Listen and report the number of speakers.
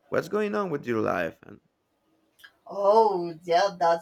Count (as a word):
two